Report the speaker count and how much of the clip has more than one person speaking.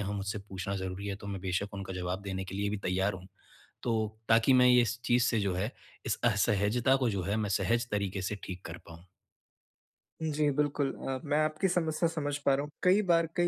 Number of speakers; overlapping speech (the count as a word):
two, no overlap